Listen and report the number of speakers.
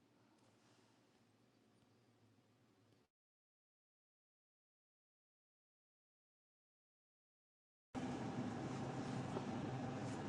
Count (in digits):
0